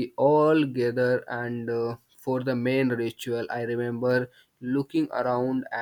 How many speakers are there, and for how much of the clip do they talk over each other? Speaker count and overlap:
1, no overlap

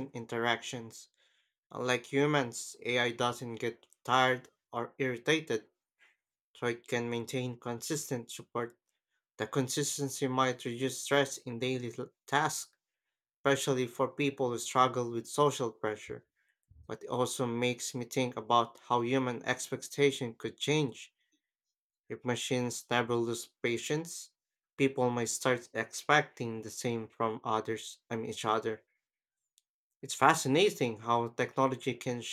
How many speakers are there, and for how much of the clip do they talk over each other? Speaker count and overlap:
1, no overlap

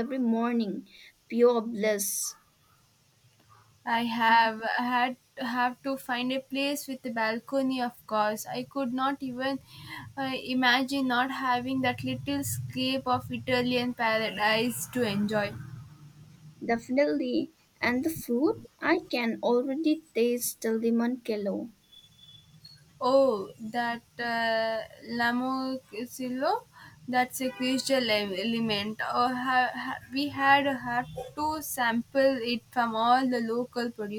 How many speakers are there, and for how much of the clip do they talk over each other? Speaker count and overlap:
2, no overlap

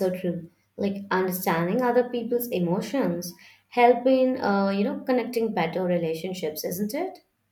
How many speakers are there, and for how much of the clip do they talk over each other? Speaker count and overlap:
1, no overlap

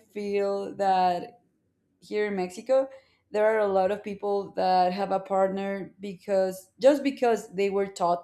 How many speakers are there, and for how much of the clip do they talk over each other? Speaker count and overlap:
1, no overlap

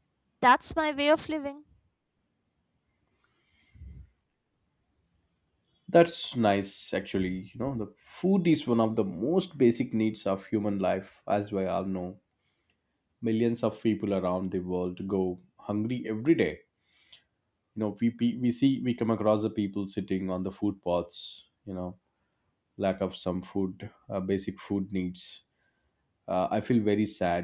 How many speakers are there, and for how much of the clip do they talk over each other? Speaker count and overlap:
2, no overlap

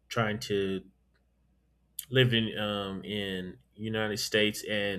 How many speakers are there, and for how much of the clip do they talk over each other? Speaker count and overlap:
1, no overlap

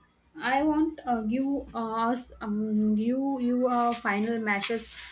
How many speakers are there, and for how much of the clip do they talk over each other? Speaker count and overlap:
1, no overlap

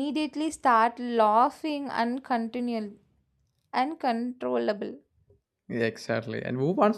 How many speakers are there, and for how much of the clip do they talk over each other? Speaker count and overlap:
2, no overlap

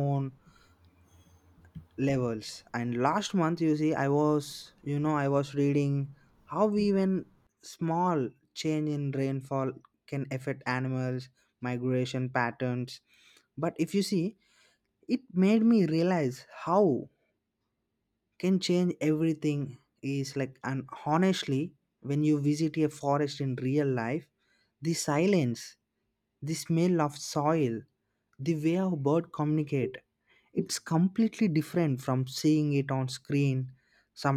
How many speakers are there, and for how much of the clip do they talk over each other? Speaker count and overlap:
1, no overlap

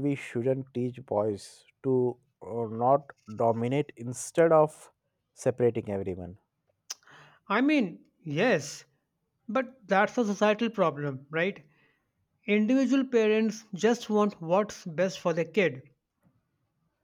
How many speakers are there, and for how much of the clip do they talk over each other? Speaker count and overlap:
2, no overlap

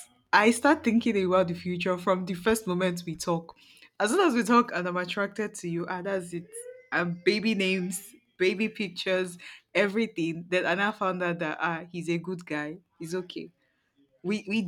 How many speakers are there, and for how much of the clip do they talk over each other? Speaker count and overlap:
1, no overlap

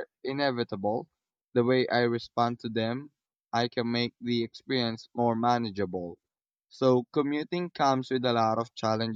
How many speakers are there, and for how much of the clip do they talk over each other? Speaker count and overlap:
1, no overlap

